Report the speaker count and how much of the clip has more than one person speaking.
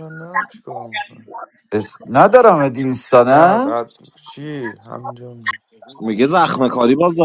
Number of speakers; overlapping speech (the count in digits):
3, about 7%